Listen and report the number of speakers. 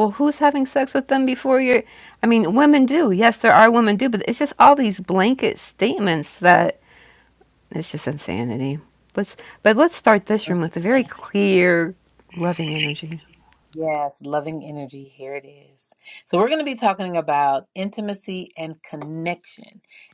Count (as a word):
two